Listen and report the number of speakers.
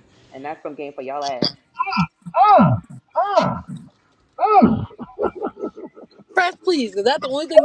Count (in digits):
3